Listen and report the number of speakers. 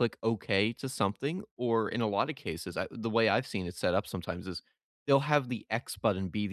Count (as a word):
one